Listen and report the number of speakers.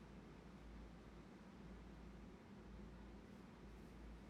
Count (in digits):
0